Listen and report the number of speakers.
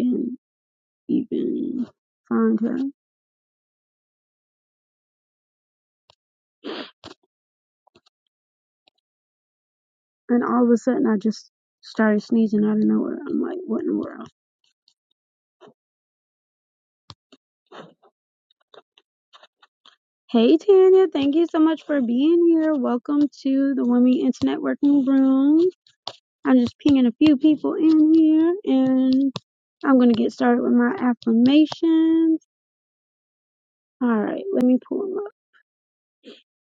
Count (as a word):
one